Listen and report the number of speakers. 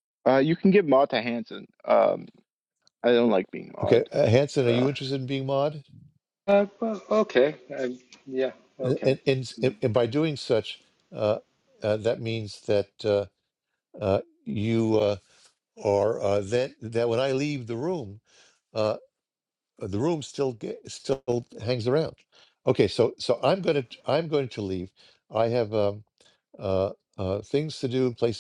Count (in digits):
3